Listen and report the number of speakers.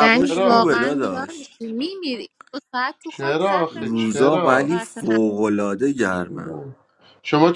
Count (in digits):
3